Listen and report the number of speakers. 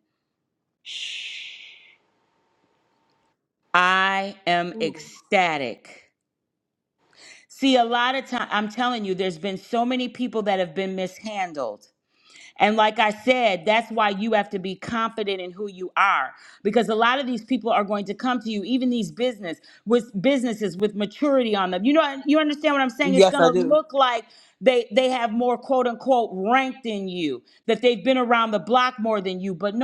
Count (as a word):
two